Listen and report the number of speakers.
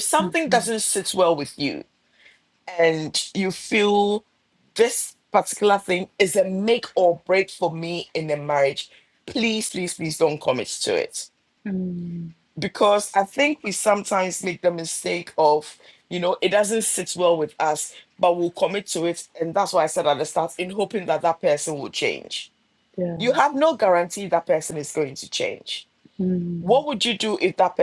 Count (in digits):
2